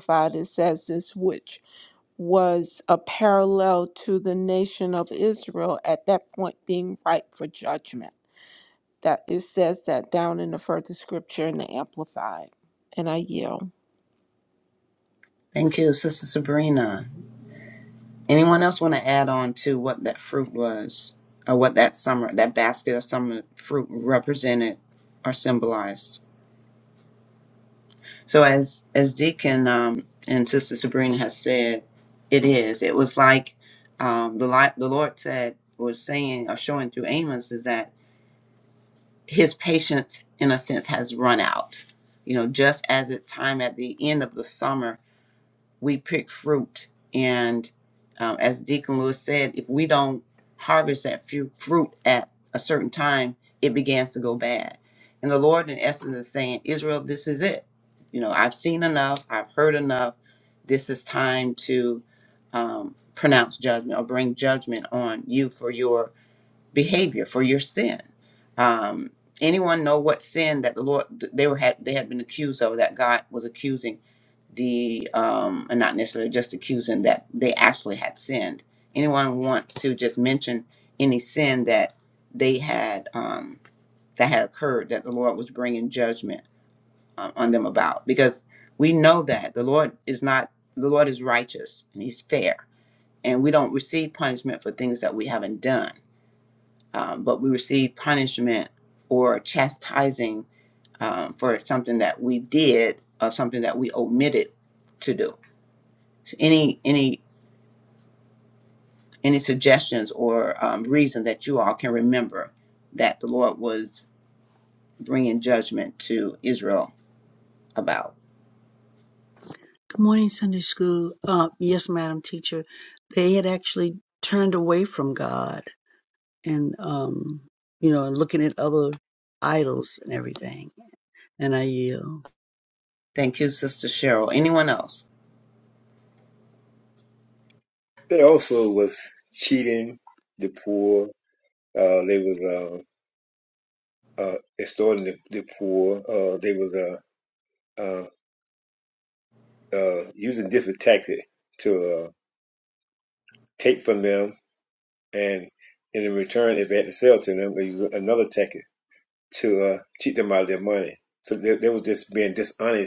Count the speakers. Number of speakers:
four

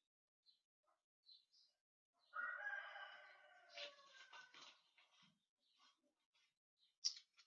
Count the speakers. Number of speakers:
zero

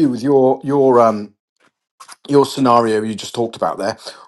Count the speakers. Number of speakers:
one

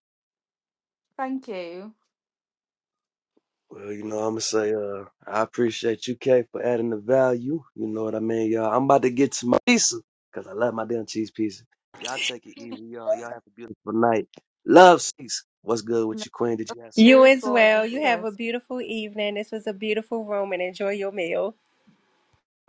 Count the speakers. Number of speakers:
three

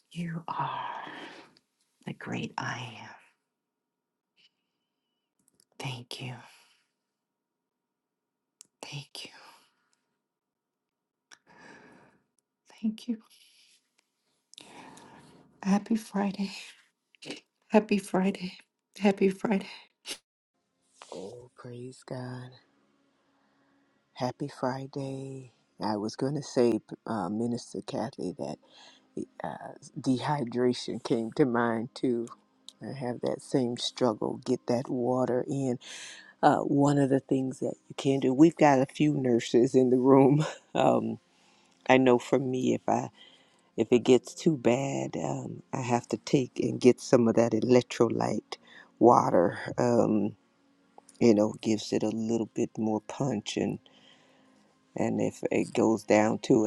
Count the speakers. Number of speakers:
two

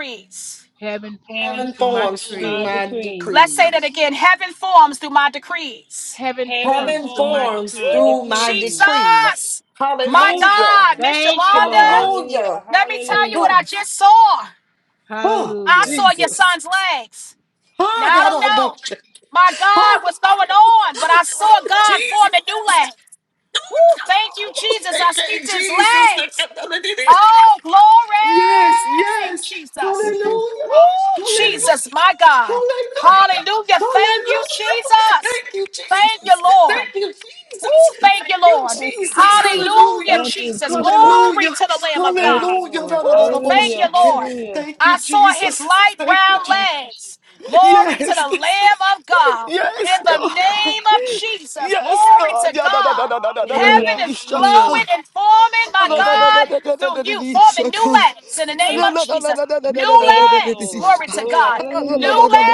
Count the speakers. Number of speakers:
four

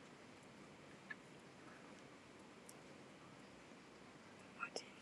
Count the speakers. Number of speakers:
zero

